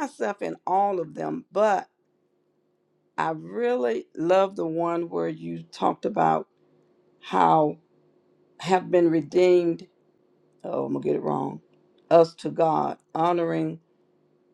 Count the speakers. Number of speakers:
1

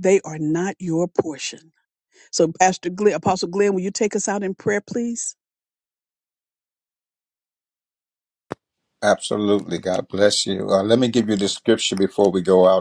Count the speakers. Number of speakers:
2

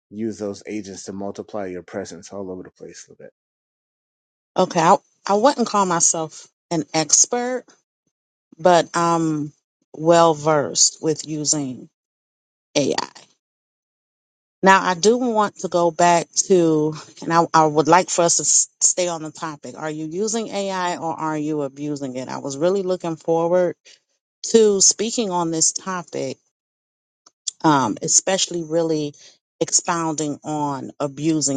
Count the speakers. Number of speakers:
2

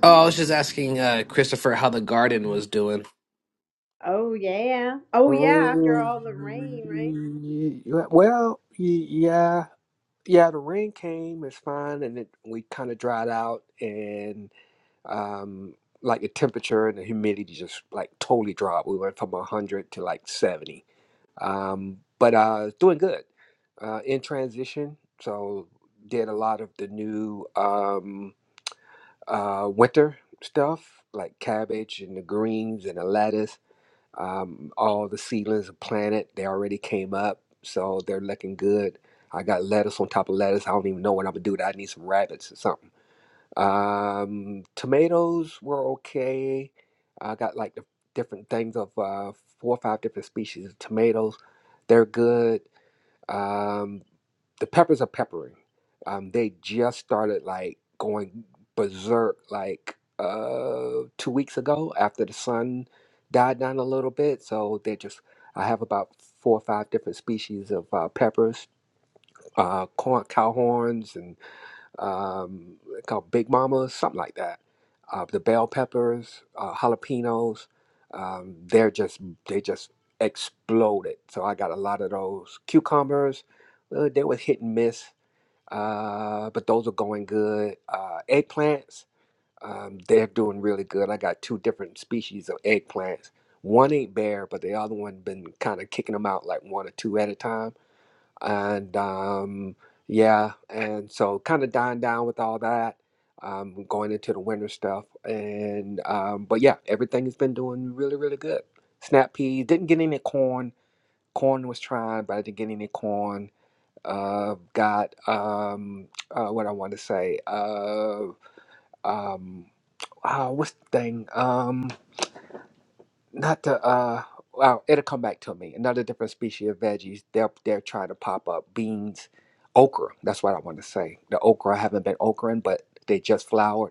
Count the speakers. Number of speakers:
3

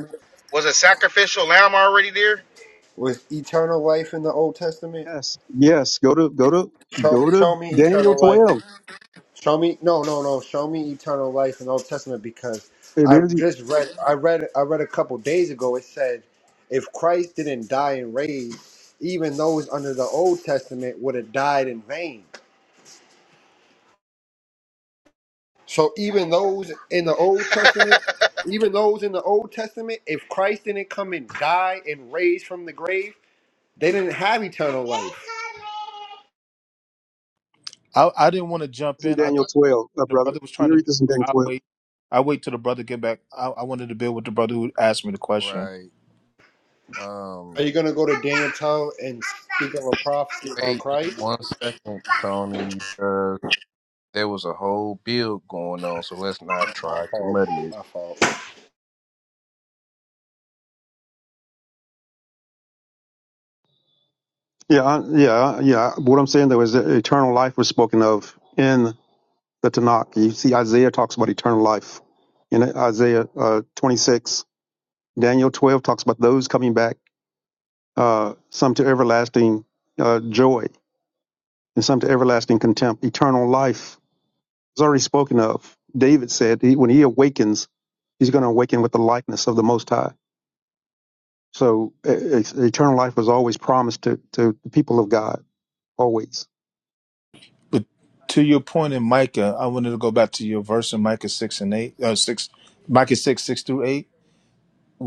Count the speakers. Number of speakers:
5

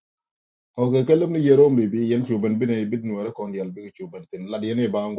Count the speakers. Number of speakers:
1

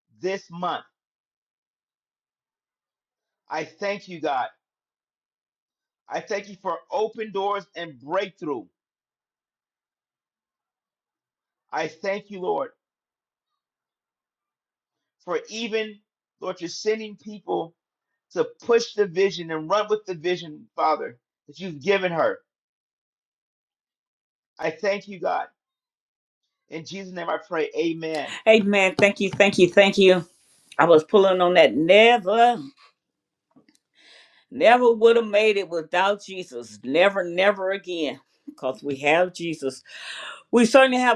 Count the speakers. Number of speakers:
2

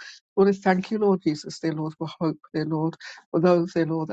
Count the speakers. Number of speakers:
1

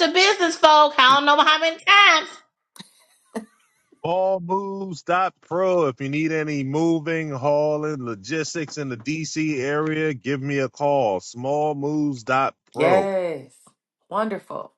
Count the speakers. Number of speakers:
3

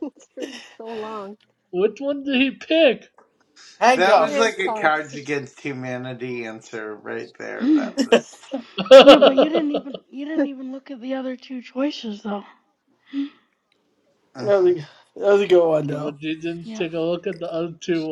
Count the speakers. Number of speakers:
5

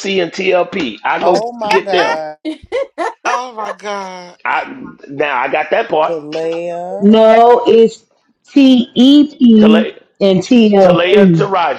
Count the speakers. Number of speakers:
4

